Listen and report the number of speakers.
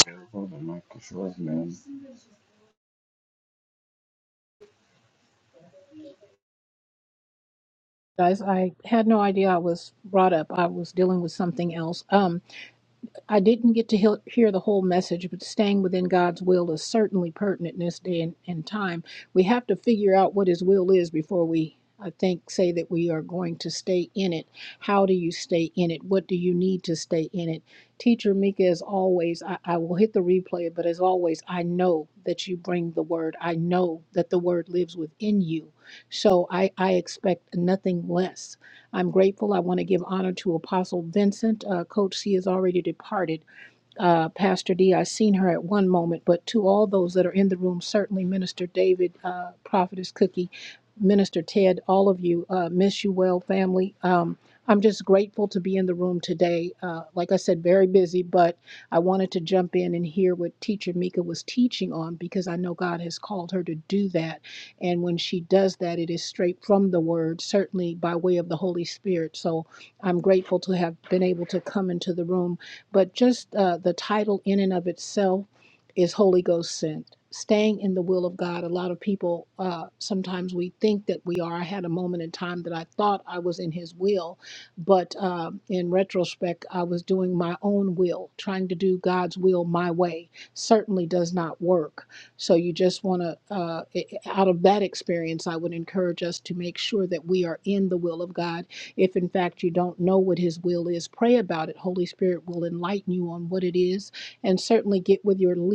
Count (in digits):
2